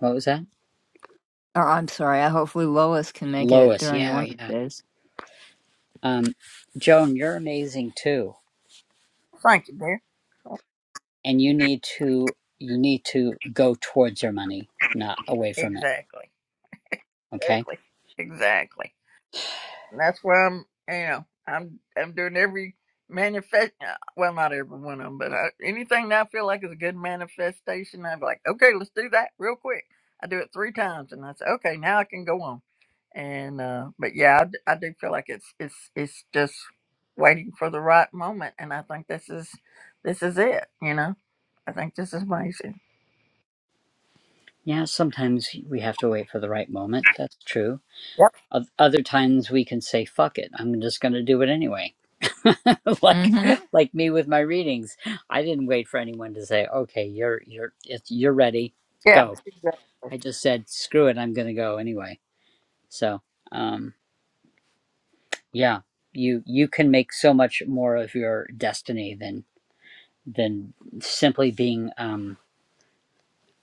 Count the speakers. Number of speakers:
three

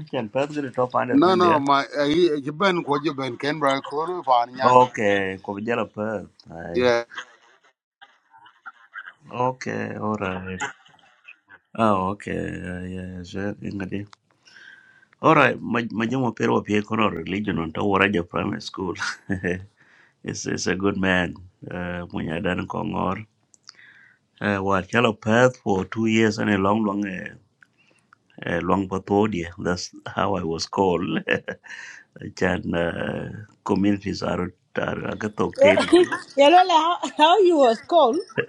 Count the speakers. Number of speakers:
three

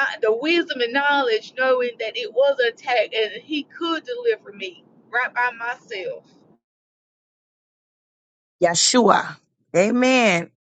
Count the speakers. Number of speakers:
two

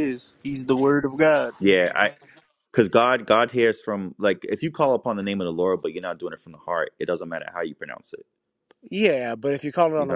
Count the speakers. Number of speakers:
three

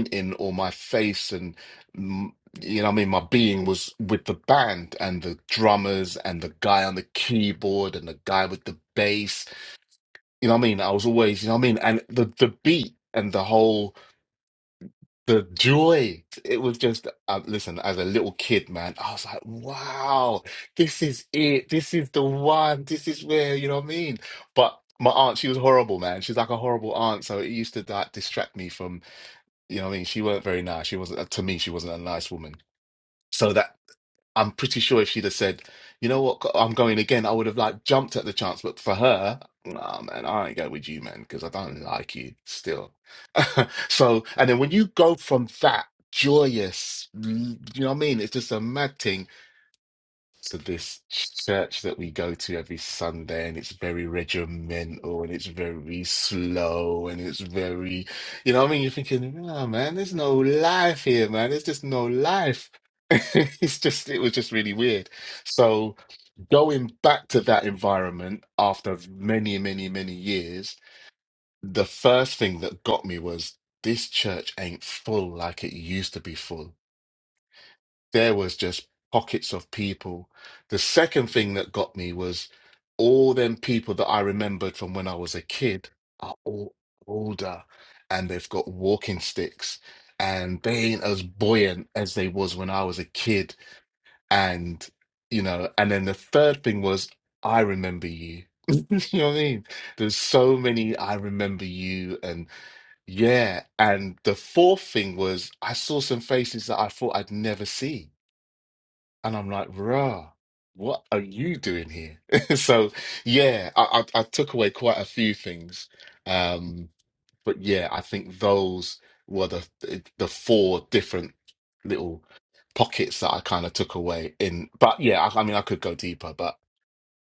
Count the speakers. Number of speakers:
one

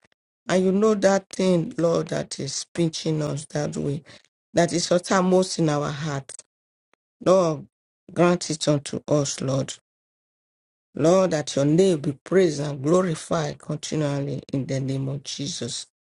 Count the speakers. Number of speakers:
one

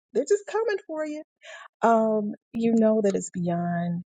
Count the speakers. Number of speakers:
one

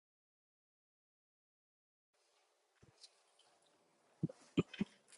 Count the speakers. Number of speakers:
zero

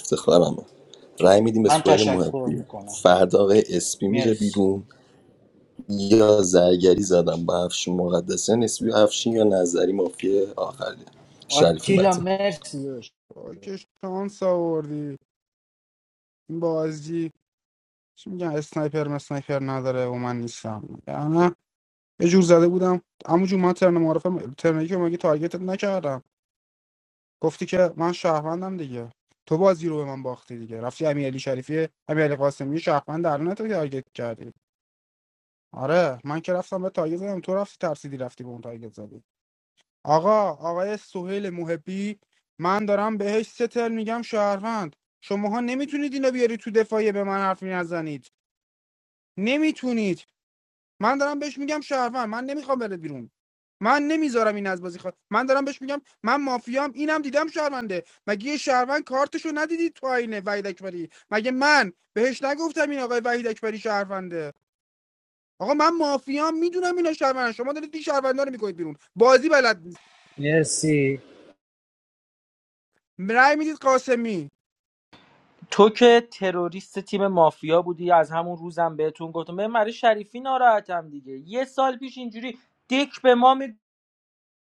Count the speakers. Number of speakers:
four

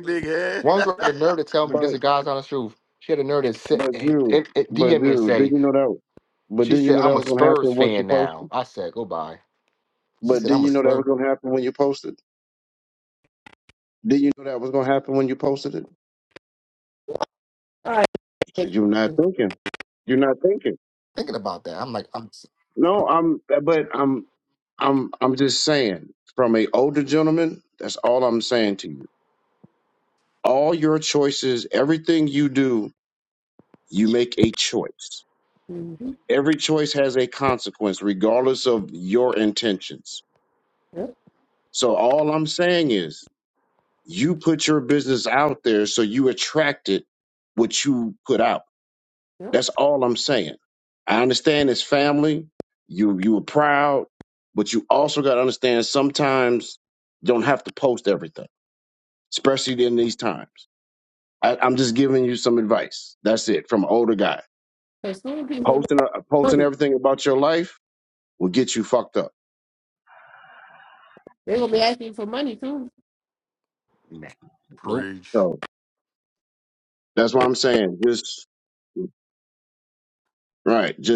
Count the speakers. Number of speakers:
four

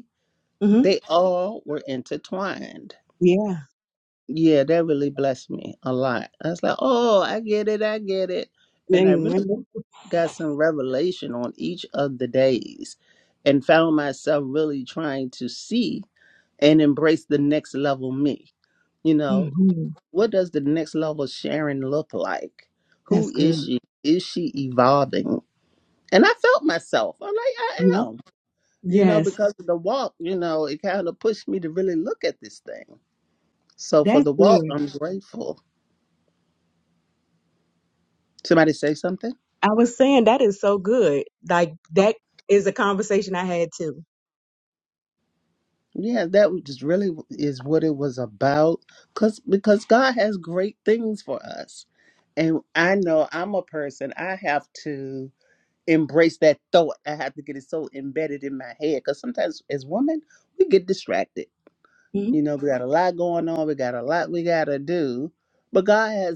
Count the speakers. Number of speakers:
two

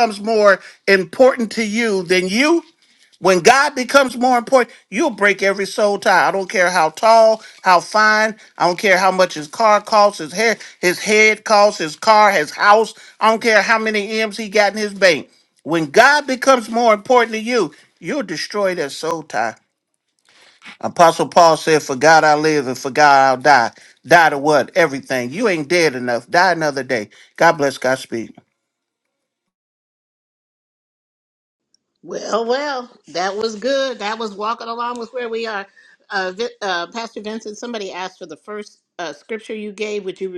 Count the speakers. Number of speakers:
two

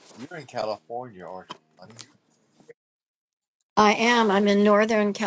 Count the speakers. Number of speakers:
two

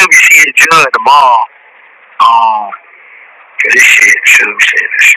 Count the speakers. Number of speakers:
one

